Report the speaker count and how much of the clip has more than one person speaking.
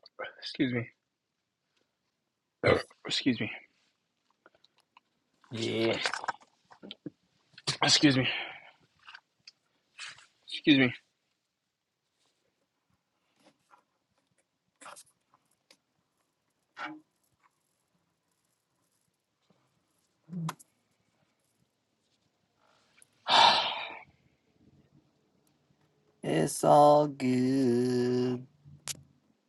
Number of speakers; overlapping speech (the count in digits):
2, no overlap